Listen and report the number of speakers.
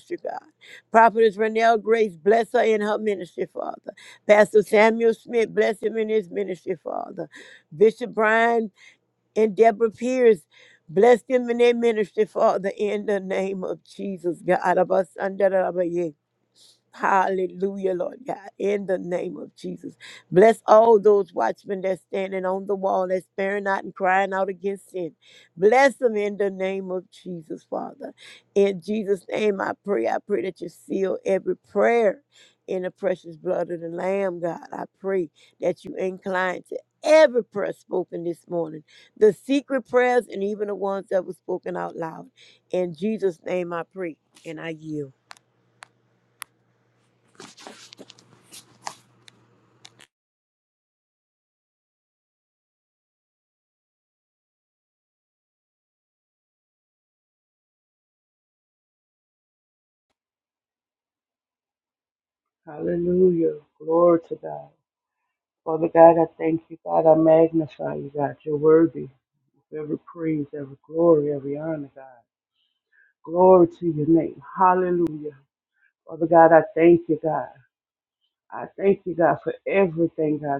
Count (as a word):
two